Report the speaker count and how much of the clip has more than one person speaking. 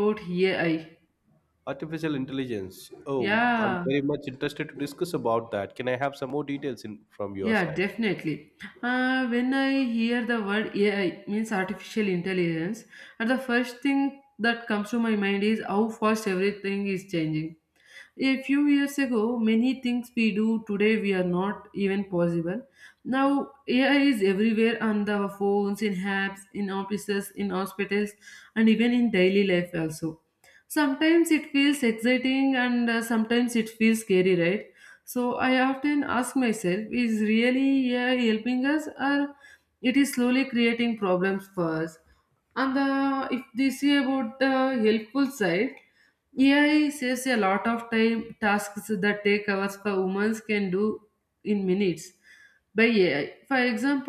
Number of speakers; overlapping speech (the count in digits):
2, about 2%